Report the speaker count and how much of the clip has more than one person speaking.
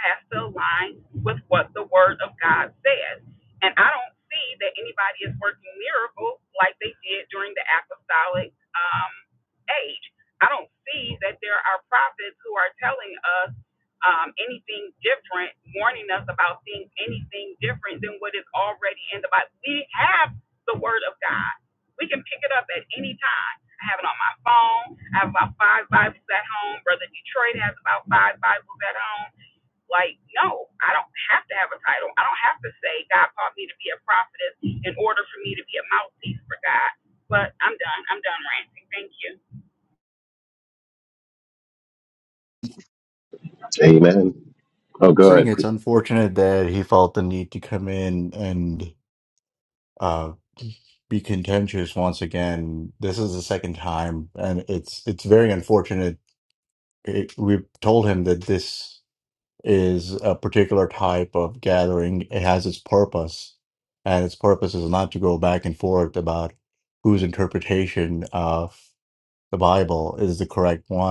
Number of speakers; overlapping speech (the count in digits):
3, about 1%